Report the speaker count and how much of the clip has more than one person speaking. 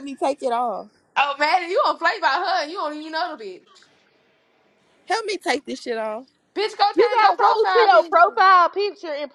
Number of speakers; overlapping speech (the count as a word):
three, about 15%